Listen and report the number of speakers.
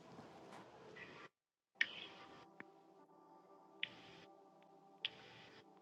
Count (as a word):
zero